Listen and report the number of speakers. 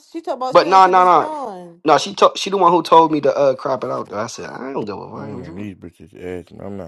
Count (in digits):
3